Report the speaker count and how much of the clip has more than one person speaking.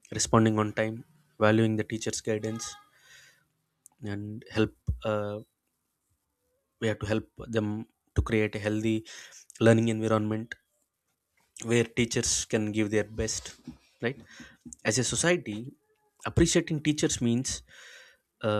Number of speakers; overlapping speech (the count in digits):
1, no overlap